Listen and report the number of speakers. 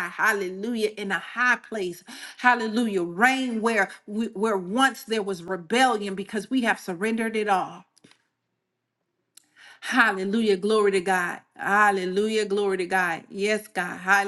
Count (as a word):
one